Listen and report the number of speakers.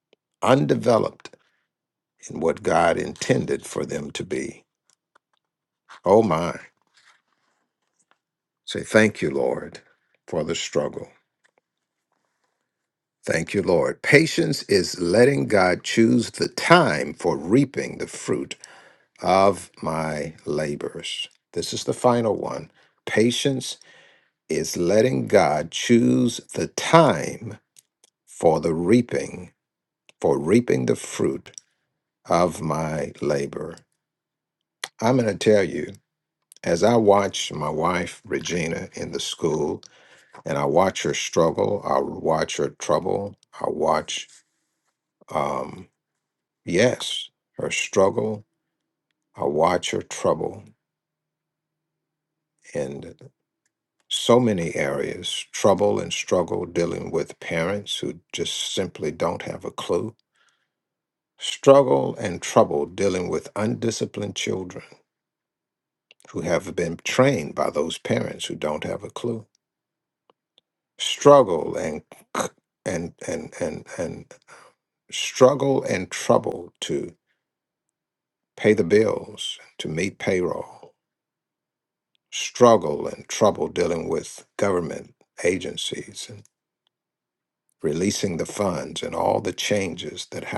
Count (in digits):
1